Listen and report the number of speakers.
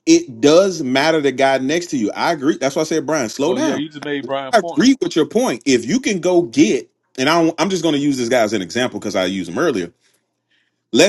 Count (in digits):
2